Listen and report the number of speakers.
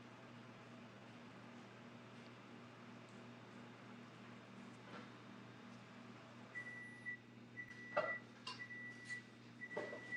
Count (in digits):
0